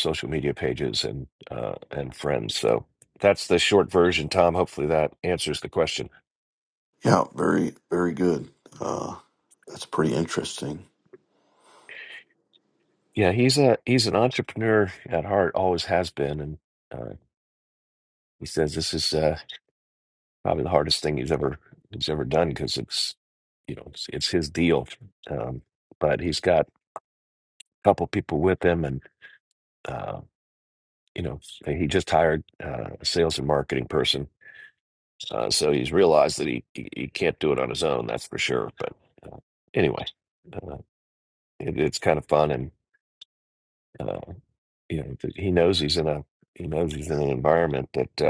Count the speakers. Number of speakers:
2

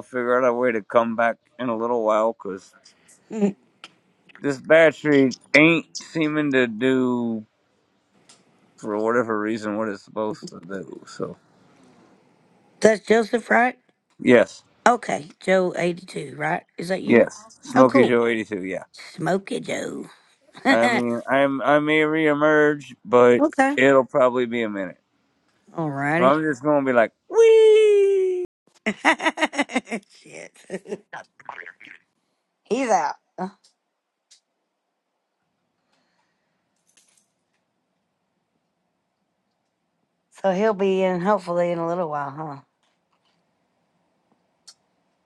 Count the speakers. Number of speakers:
2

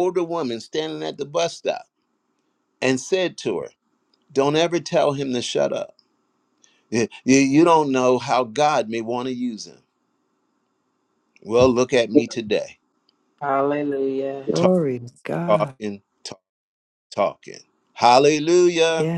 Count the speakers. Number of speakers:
3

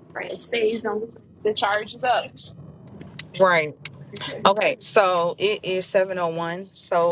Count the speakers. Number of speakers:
2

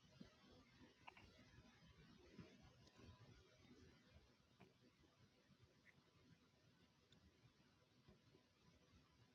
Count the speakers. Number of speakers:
0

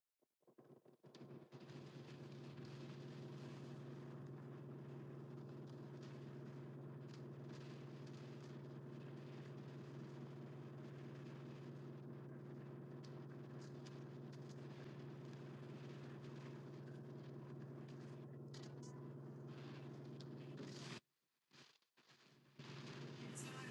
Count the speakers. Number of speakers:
0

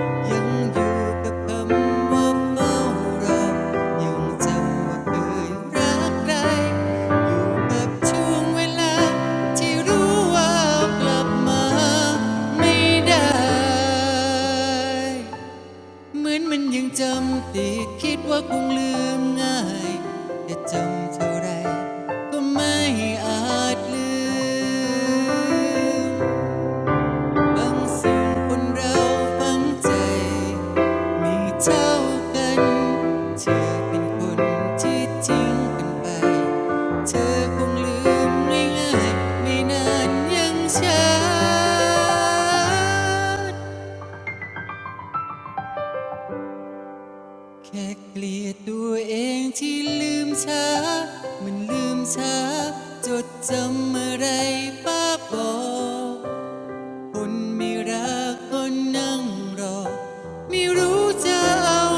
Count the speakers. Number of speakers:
1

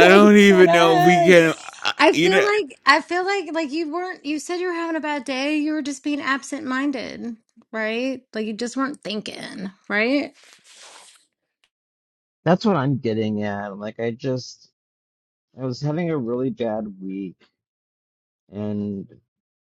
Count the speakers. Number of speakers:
3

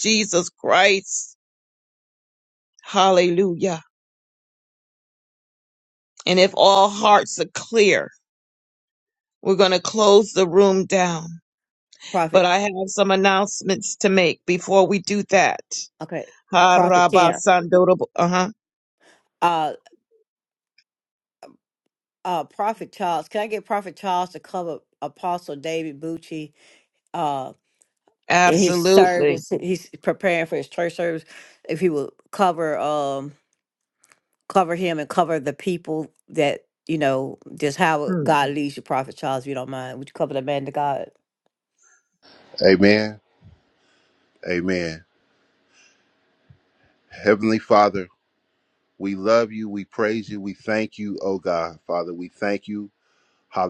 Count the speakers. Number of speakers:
3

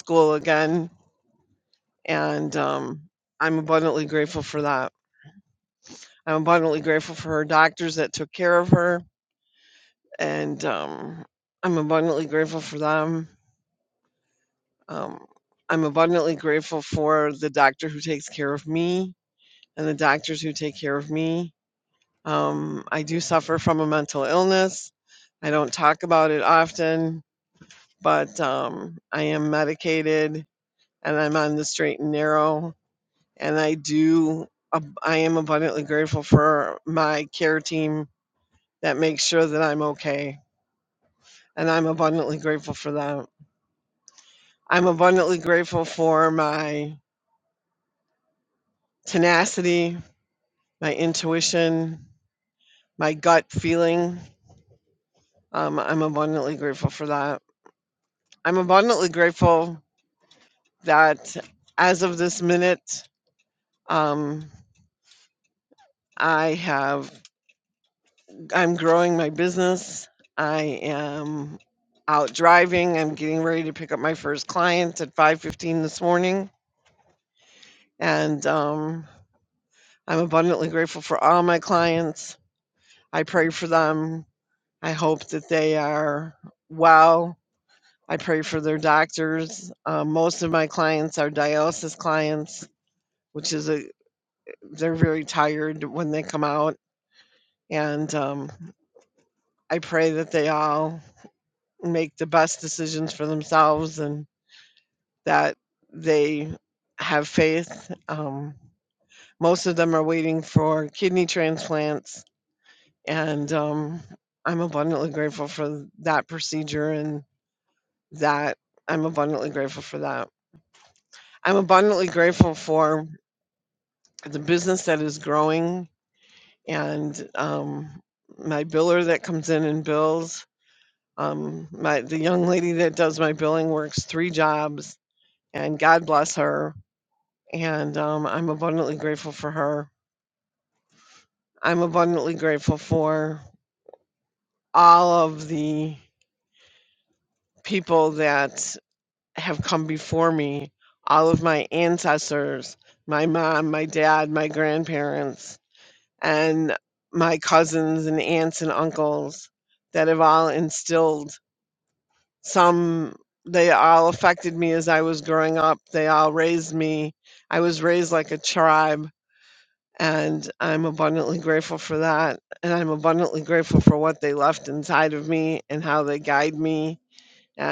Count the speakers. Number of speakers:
1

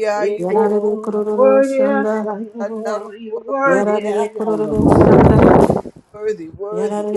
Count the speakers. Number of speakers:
3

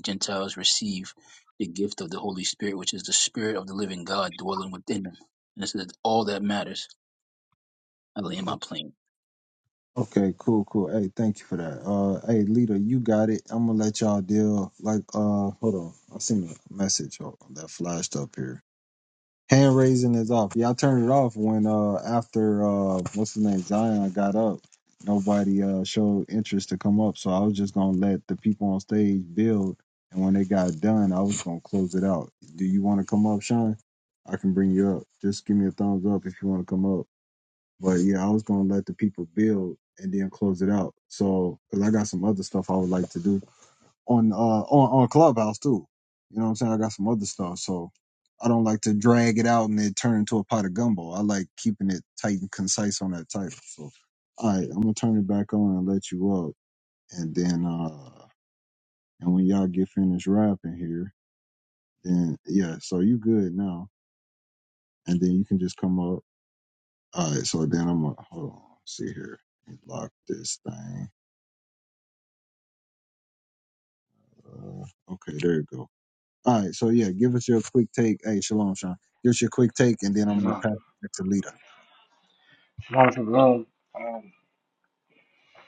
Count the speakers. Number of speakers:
3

